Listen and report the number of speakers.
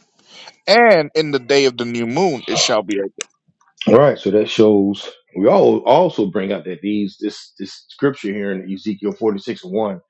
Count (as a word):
two